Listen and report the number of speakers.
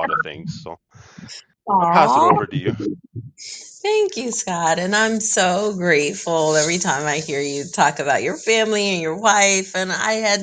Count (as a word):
two